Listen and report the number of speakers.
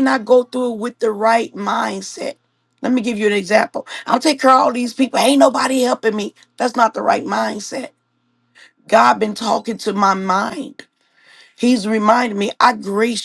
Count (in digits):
1